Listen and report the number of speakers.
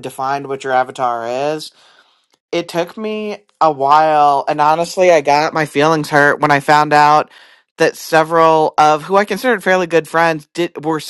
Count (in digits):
1